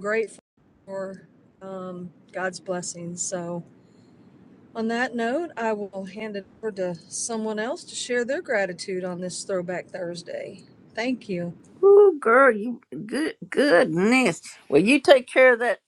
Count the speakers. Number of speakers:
two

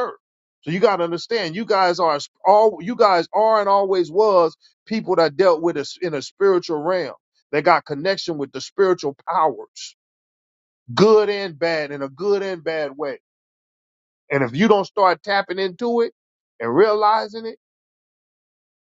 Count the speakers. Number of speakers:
one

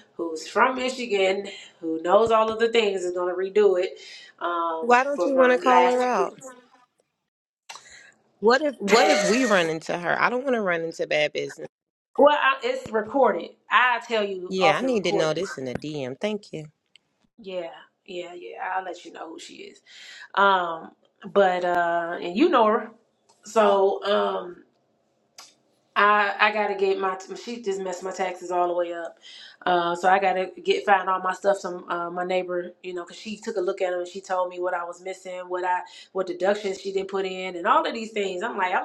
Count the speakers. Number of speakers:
two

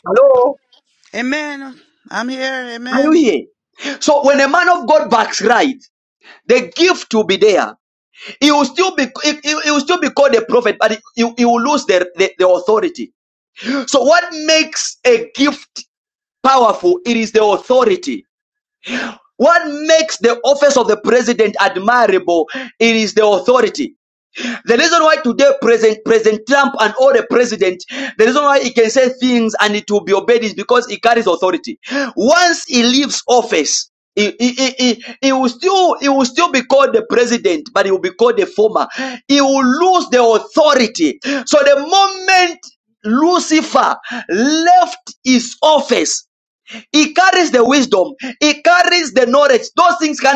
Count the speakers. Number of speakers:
two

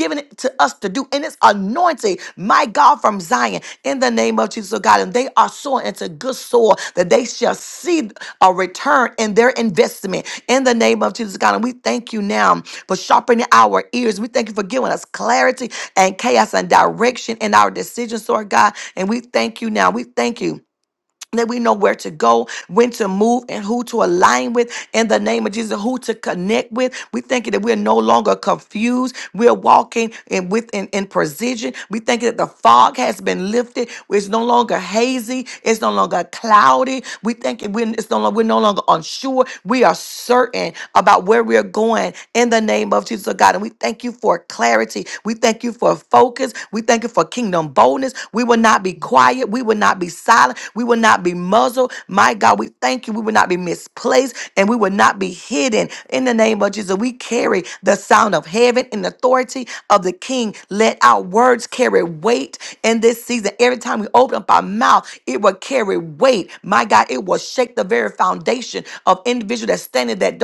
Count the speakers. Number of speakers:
one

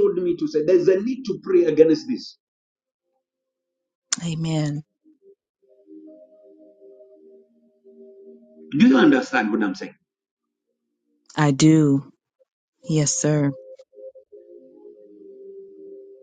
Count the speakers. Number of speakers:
two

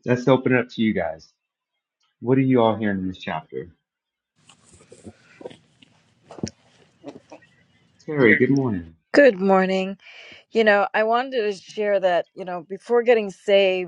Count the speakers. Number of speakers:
two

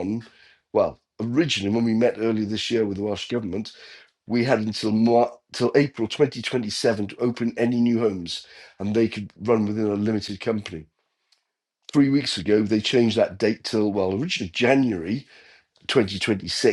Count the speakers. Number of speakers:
one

